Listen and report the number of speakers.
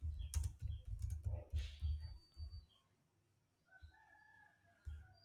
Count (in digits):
0